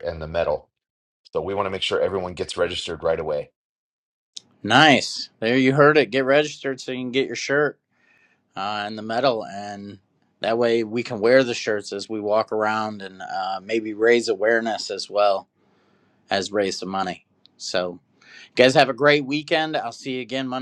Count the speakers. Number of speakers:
2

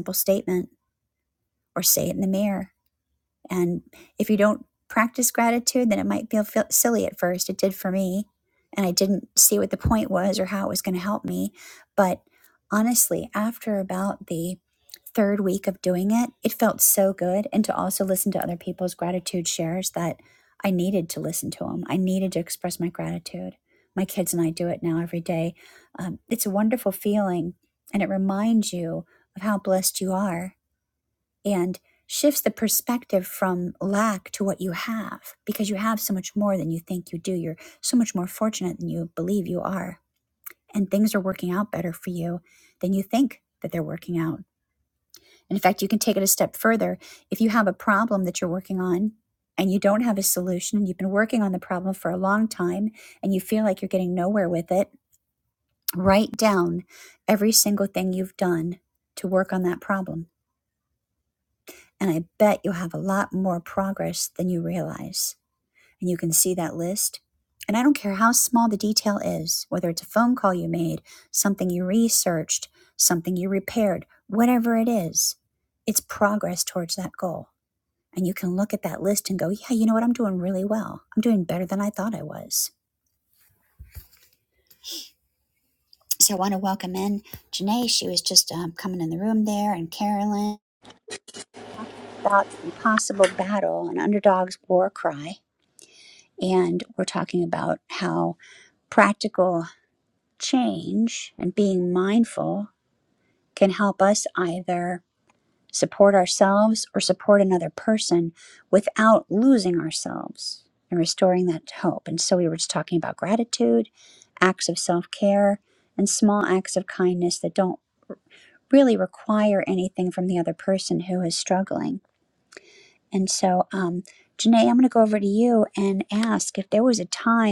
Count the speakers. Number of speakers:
1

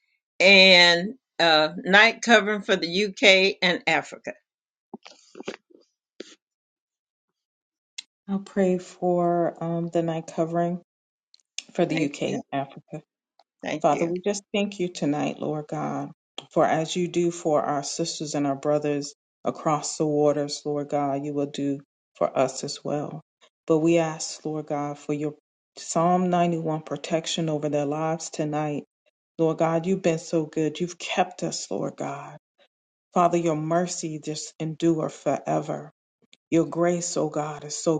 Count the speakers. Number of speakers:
2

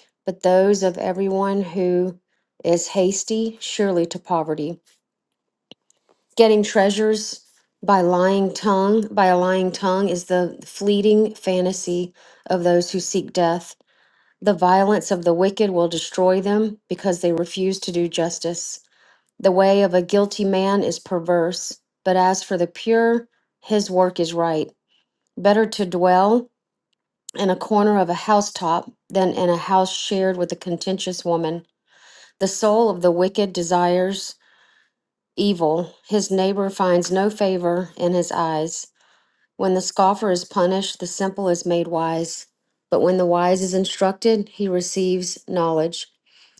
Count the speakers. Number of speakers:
1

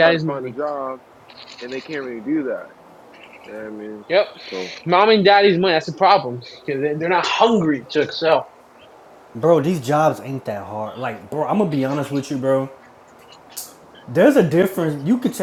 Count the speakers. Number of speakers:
3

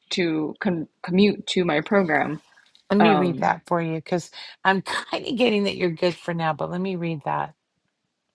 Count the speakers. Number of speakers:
2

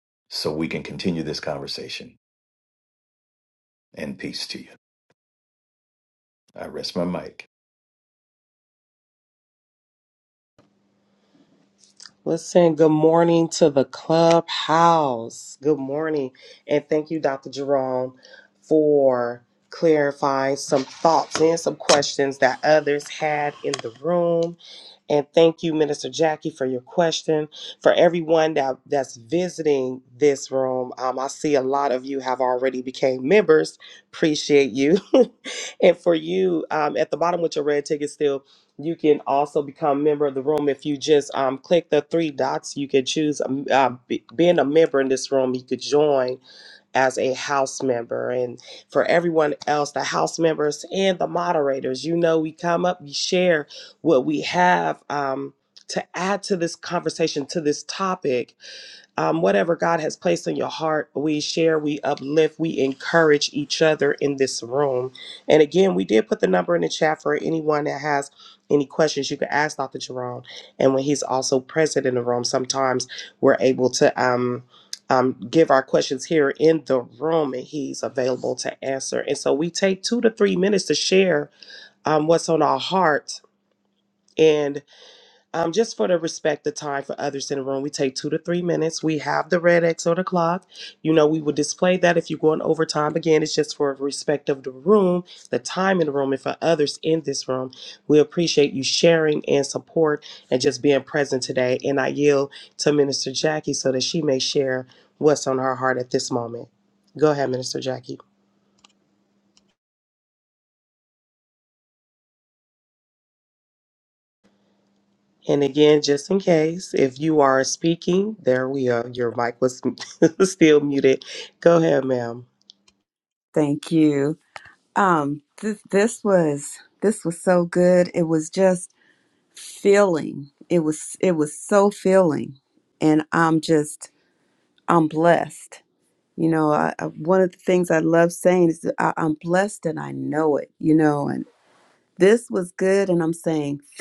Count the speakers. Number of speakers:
3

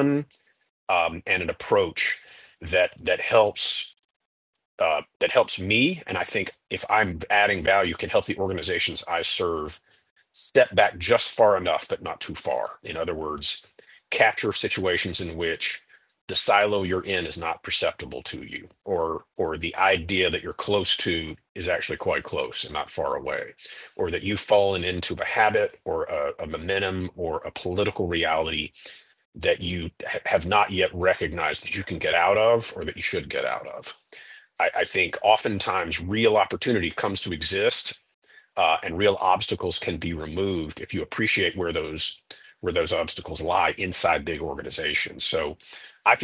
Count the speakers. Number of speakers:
1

